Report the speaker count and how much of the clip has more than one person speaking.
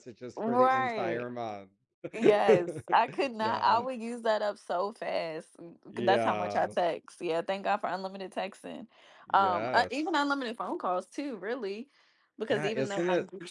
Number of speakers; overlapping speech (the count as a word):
two, about 25%